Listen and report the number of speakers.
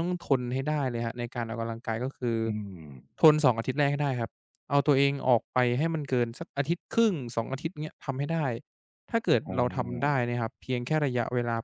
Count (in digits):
2